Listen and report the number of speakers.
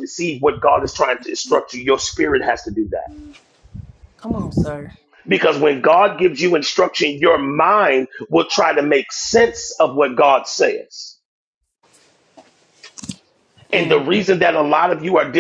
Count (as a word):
two